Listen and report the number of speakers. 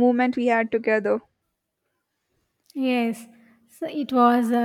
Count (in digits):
2